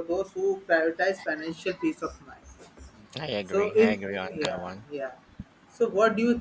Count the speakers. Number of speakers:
two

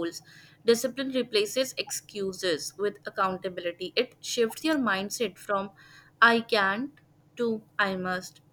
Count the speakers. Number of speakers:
one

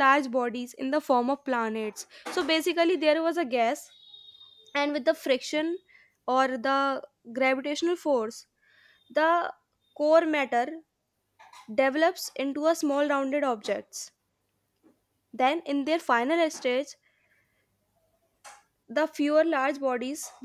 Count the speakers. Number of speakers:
one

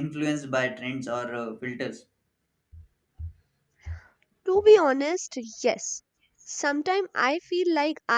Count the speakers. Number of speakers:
two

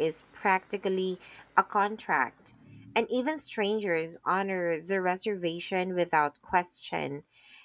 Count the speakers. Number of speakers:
one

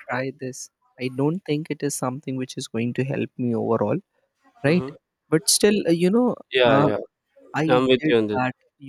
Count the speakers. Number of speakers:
two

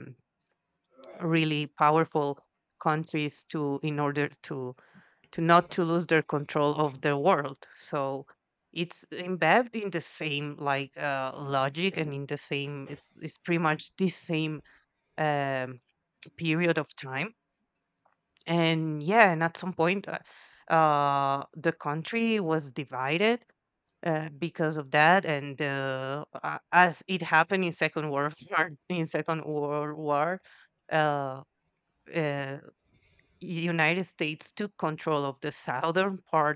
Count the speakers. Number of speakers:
one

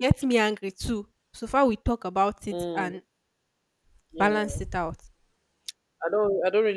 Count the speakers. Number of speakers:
two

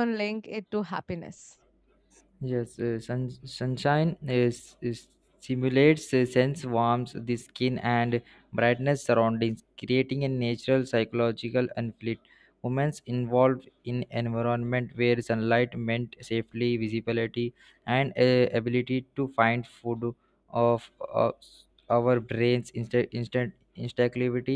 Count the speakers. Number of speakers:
two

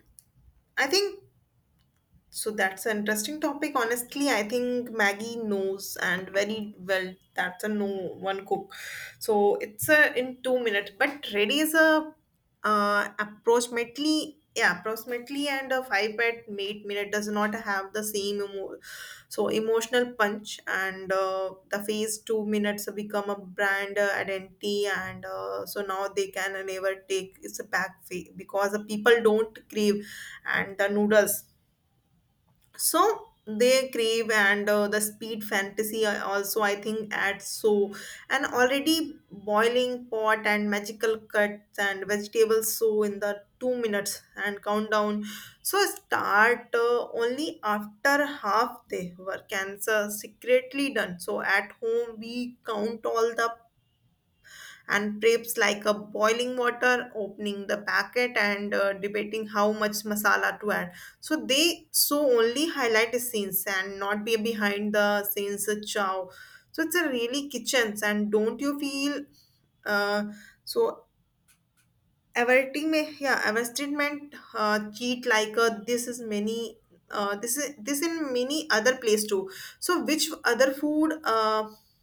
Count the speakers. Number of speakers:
one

